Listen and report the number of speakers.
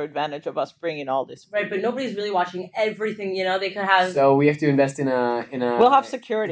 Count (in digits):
3